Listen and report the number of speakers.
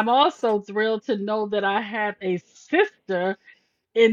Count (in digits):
1